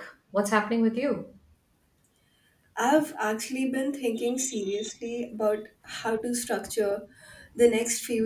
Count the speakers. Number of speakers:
two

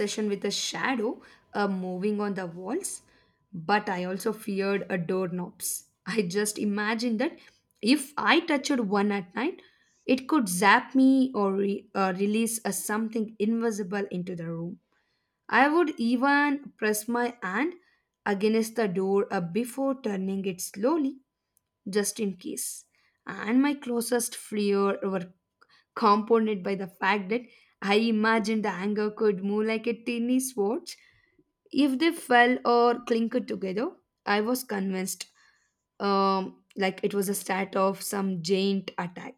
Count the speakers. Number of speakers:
one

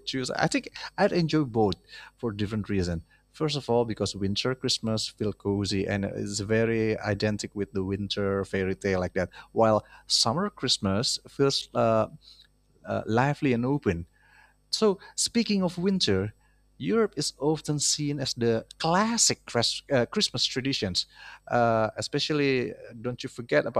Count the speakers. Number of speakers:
one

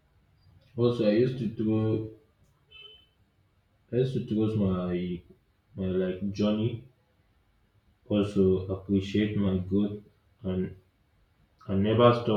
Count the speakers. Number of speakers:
one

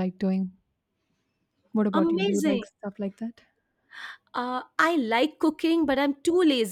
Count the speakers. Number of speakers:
two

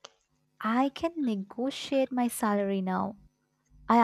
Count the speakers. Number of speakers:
one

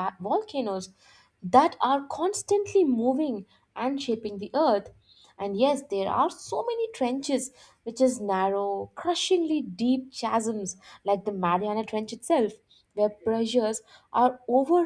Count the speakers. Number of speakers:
one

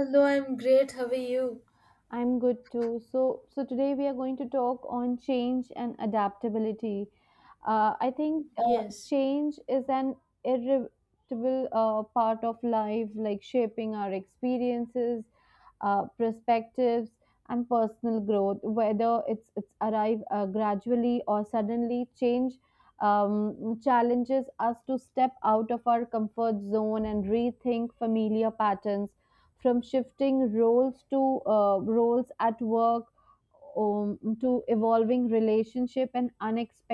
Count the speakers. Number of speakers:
two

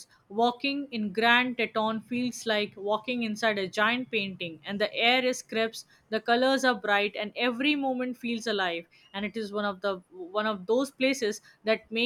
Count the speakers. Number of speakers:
one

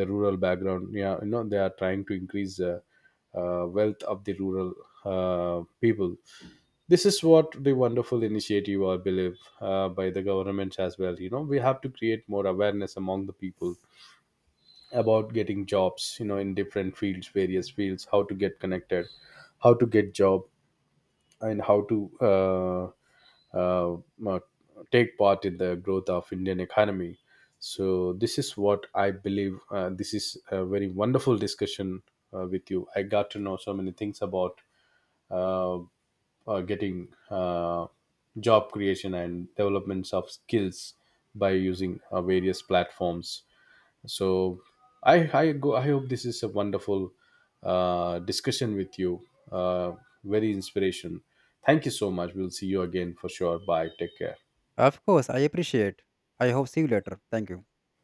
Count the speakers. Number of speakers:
two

